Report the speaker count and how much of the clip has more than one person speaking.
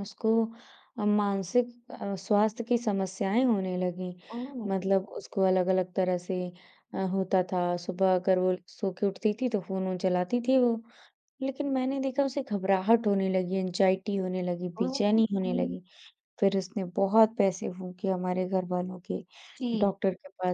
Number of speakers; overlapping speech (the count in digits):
2, about 3%